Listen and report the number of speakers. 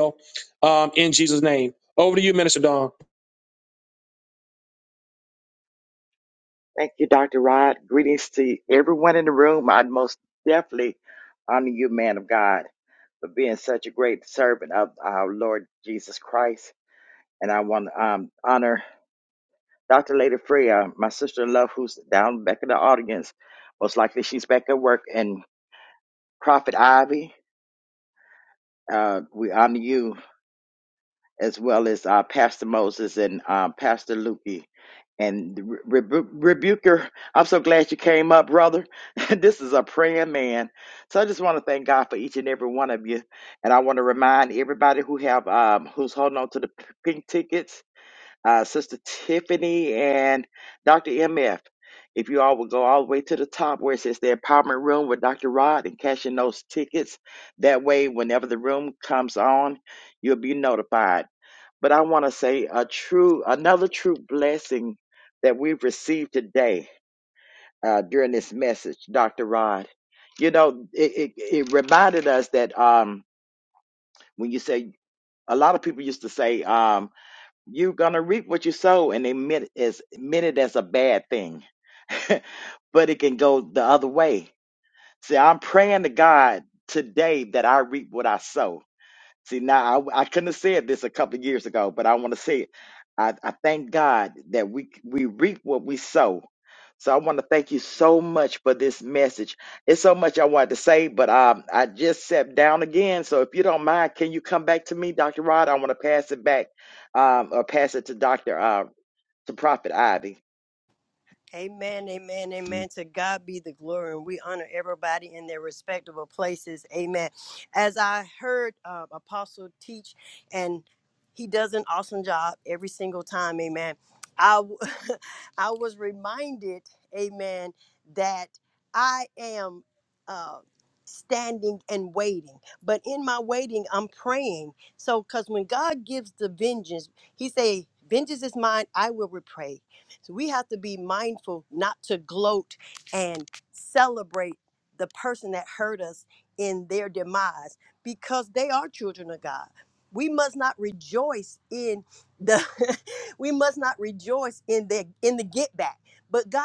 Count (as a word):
three